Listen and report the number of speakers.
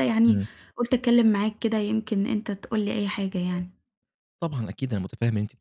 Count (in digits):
2